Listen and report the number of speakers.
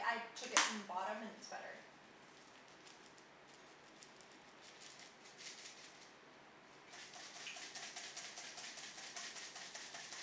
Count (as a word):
one